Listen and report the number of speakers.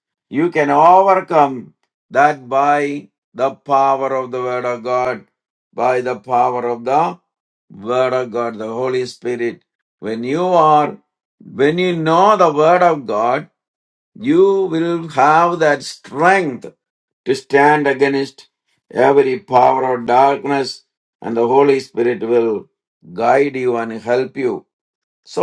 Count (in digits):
1